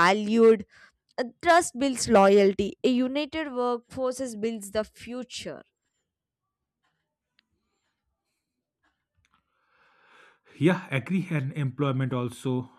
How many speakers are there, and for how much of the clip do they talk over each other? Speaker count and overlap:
2, no overlap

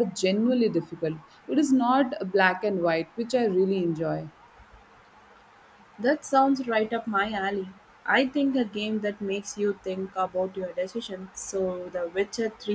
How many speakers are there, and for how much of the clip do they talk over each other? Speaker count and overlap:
2, no overlap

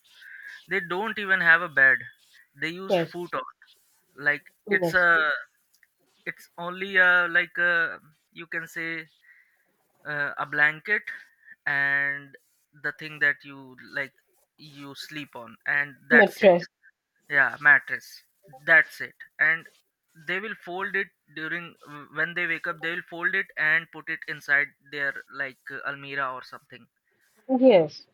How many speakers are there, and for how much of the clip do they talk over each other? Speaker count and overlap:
2, about 3%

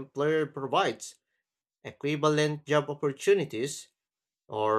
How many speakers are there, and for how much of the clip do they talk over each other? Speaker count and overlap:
1, no overlap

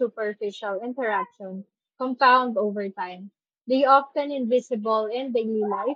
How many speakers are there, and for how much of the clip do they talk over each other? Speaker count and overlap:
1, no overlap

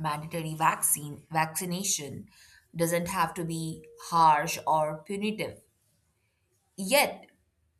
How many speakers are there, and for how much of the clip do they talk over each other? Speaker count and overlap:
1, no overlap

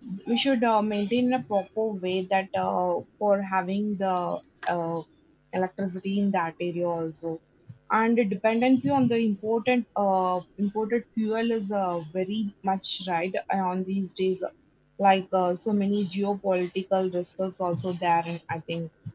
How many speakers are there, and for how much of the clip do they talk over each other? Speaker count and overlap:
1, no overlap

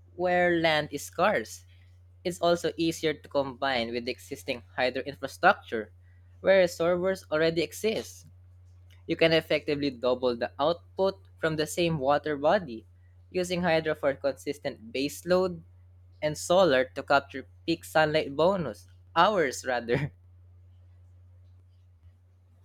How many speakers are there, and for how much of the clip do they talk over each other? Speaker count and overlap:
1, no overlap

